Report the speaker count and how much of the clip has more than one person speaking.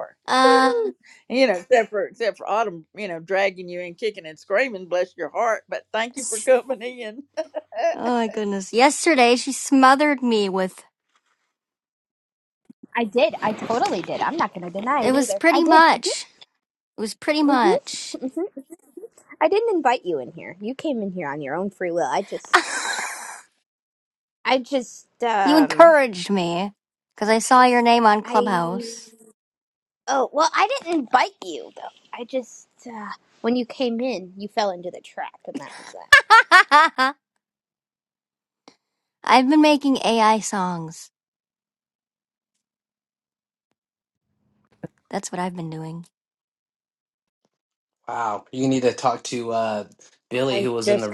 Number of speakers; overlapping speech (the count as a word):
four, about 8%